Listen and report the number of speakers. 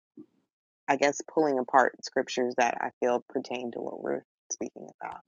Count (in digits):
1